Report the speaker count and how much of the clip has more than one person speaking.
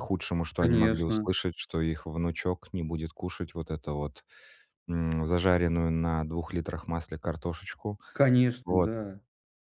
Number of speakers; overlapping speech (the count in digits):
2, about 9%